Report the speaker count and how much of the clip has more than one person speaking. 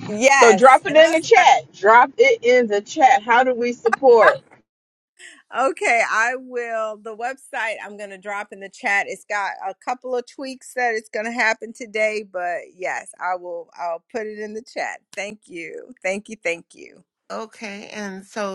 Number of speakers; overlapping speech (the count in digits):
3, about 5%